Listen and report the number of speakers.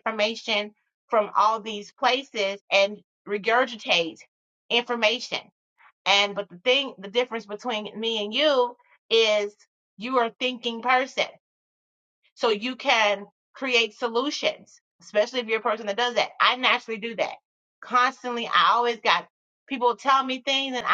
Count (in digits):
1